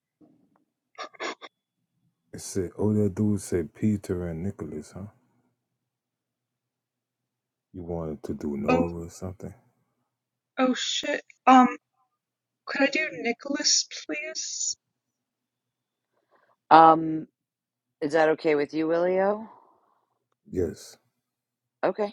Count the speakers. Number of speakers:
3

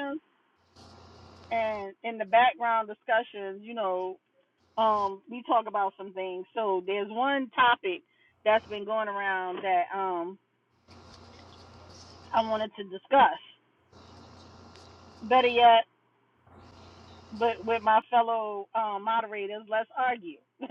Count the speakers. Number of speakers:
1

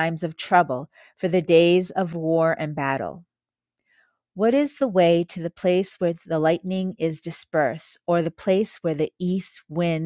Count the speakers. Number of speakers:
1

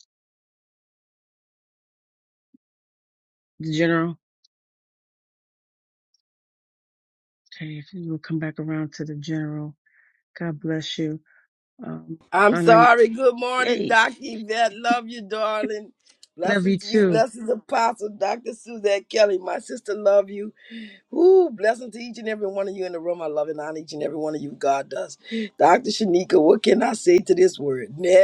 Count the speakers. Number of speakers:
2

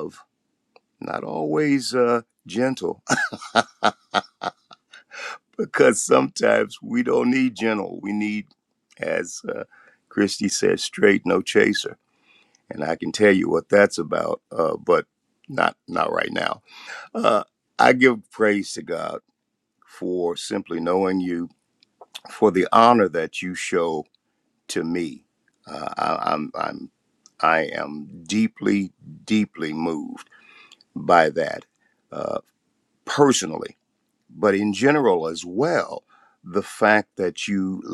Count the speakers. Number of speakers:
1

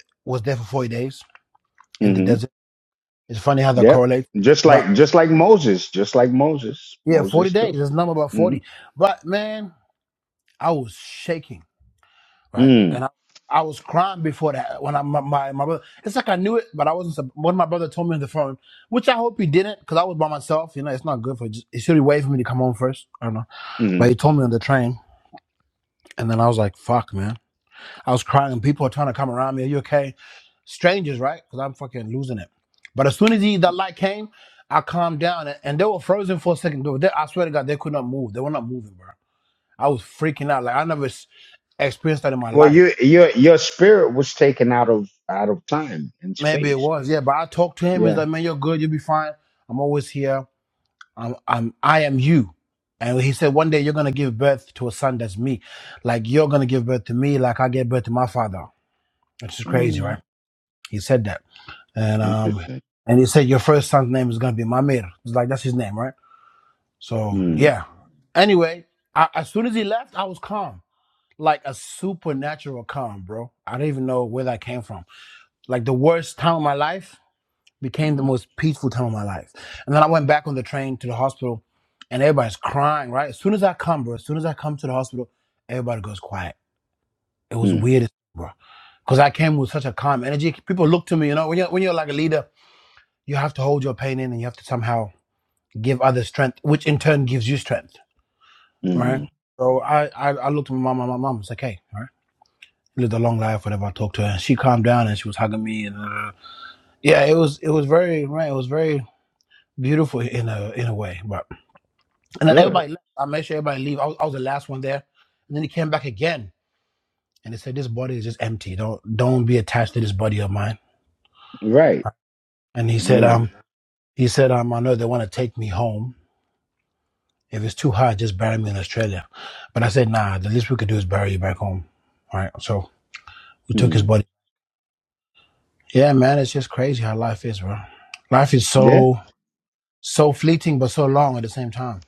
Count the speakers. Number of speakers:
2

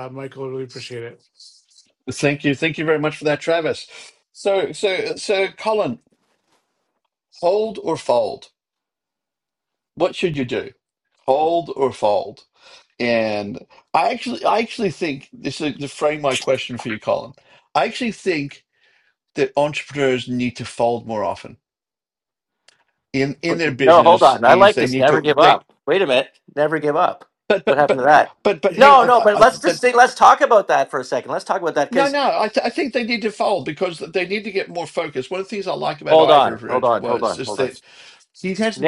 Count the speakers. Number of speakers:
3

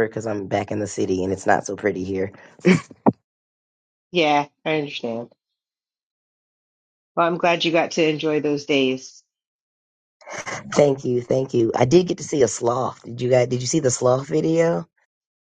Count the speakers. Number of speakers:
2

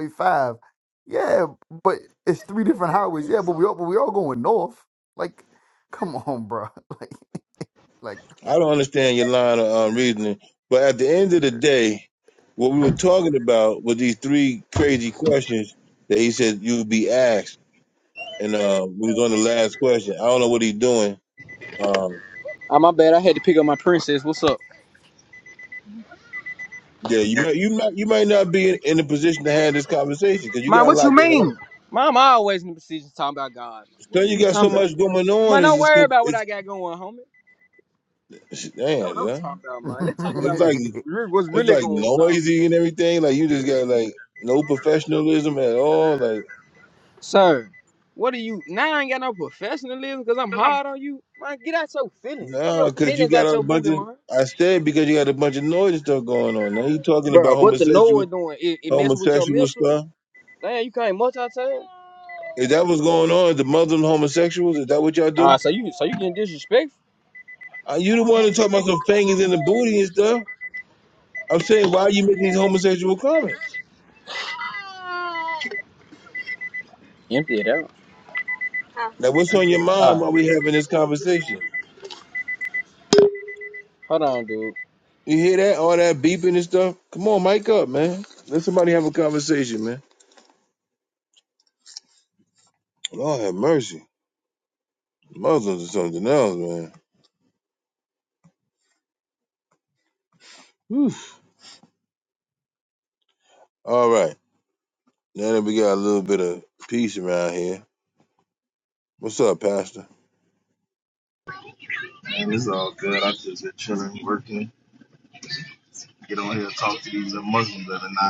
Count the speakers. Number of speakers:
4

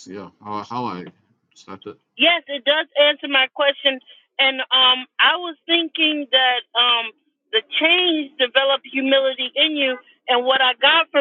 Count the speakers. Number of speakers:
2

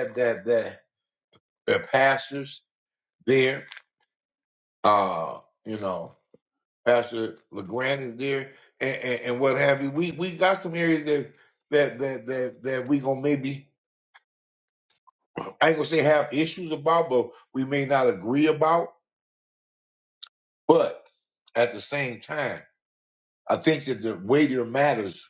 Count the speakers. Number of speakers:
1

